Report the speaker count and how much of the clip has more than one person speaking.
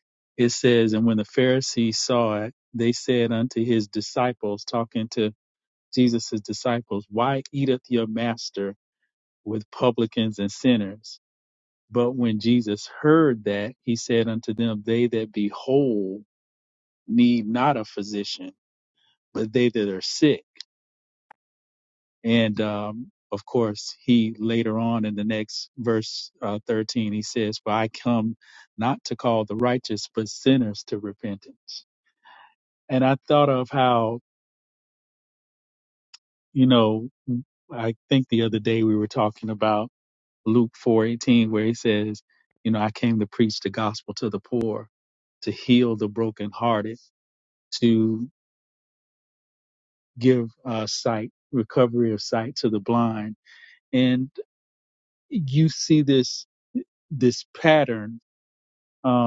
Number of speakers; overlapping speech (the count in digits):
1, no overlap